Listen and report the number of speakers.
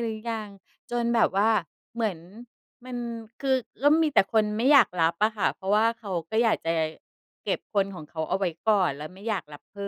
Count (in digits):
1